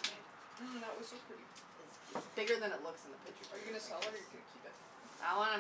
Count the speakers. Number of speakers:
2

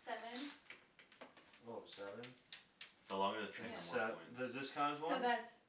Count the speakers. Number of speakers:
3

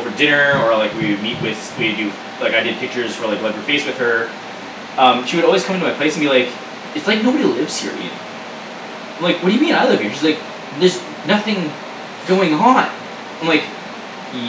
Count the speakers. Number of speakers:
1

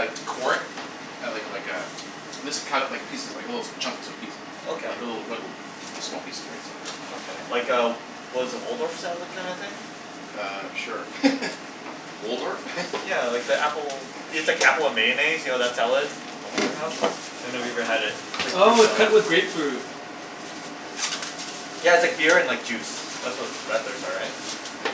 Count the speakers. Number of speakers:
3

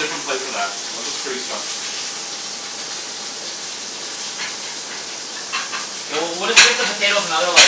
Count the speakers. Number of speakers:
2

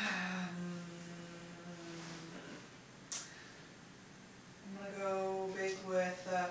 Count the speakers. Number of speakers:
1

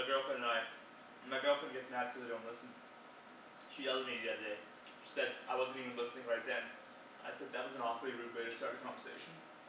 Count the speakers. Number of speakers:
1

